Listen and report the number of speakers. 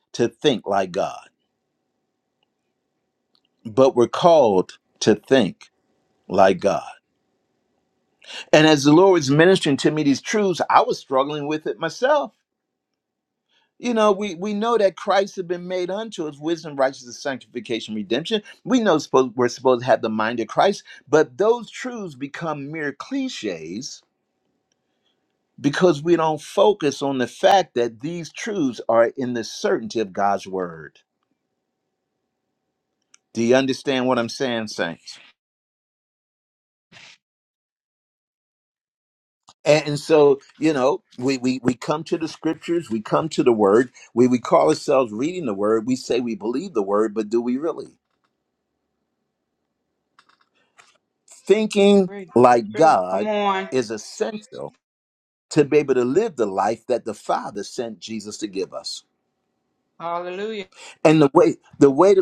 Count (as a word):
two